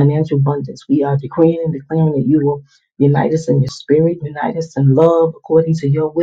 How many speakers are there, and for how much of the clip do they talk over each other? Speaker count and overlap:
1, no overlap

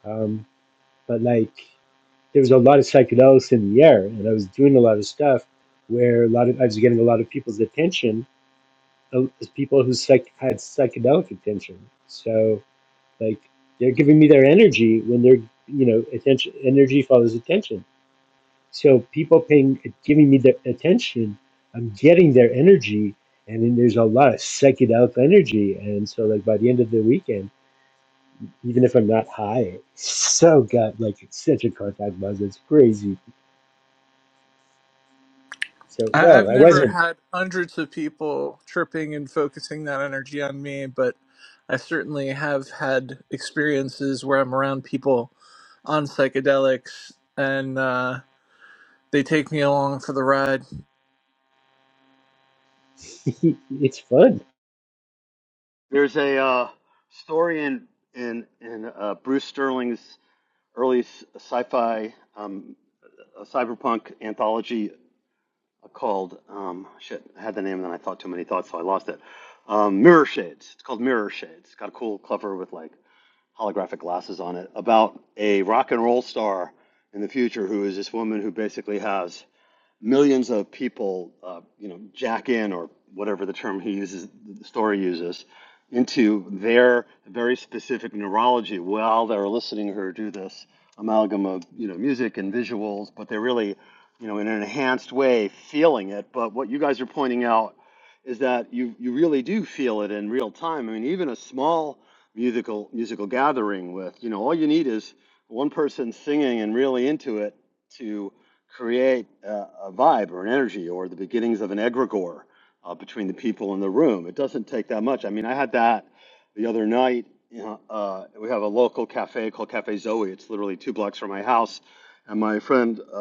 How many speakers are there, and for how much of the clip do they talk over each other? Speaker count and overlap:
3, about 1%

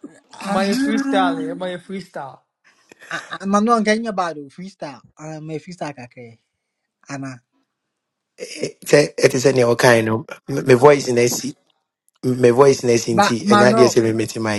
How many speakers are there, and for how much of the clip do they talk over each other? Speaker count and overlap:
3, about 12%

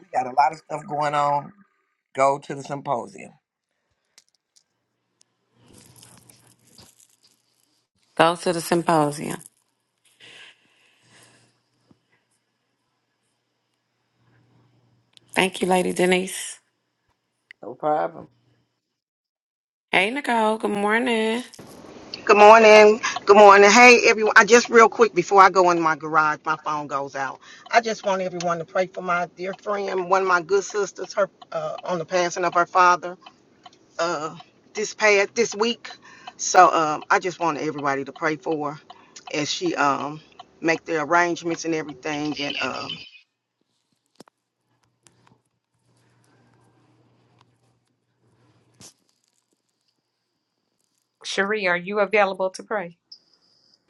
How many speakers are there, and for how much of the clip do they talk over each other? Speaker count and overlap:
4, no overlap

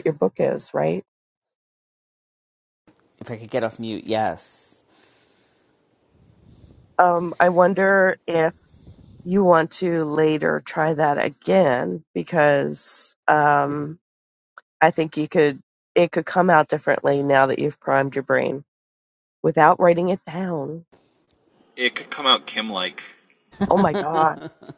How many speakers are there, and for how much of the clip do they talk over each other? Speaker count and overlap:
3, no overlap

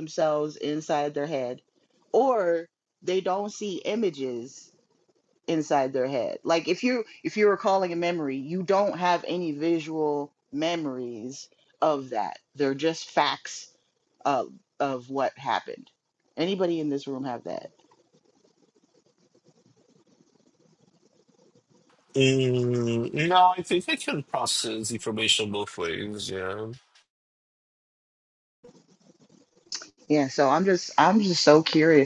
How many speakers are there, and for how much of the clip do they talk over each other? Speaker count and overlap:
2, no overlap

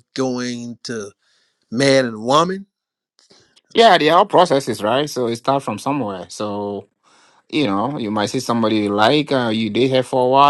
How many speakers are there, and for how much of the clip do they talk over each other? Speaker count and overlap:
2, no overlap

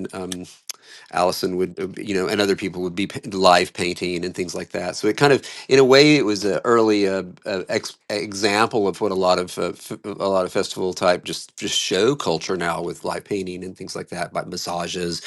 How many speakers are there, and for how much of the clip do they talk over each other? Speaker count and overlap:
1, no overlap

